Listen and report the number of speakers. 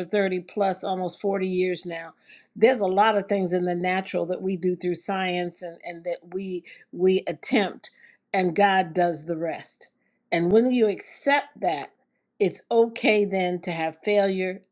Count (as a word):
one